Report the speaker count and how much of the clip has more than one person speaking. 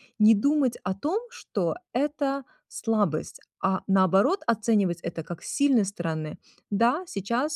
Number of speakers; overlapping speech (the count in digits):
1, no overlap